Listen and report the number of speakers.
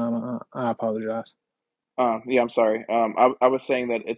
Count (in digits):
2